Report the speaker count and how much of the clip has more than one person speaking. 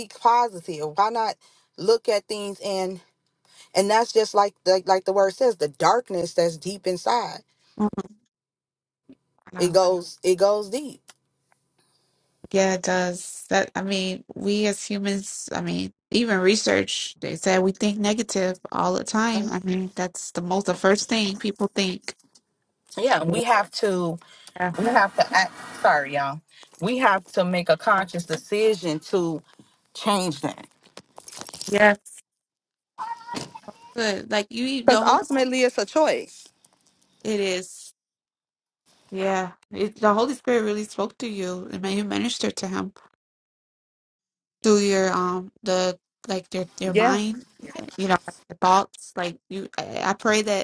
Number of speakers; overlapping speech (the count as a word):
two, about 2%